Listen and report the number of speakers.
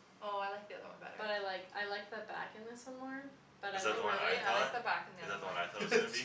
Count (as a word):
three